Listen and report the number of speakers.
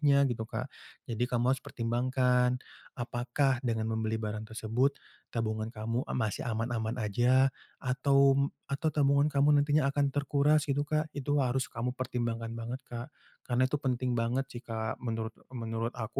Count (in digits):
1